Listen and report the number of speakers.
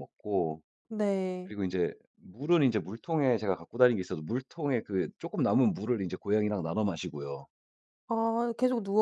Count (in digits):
2